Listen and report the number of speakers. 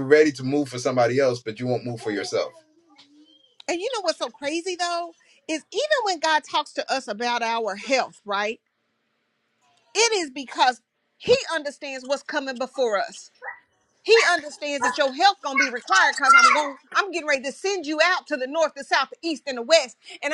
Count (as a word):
two